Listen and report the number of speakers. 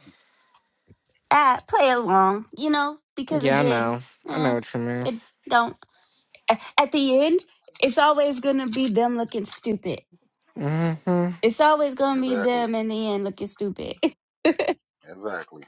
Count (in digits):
3